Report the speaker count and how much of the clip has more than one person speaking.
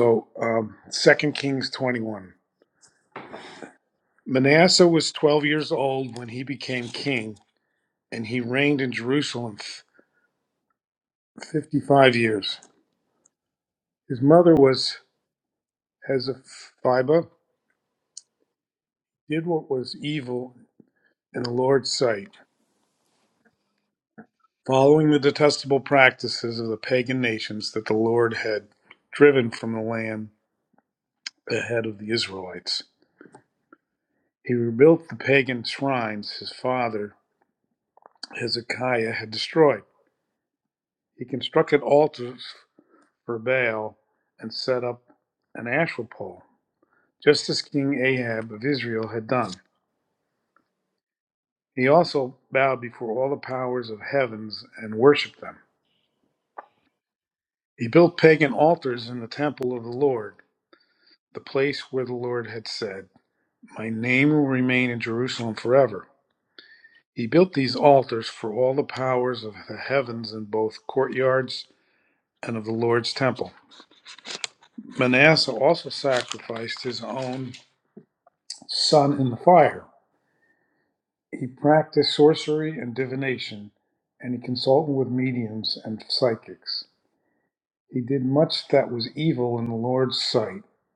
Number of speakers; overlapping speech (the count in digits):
1, no overlap